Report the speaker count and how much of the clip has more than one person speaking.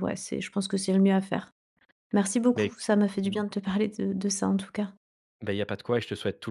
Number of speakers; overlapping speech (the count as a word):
two, about 6%